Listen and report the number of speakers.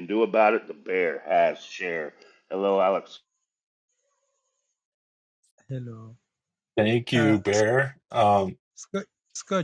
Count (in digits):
3